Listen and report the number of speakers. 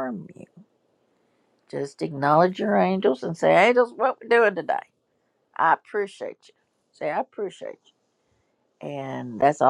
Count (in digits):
1